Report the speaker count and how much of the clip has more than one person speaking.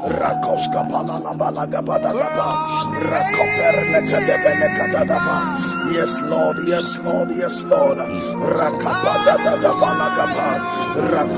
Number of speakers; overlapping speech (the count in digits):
2, about 45%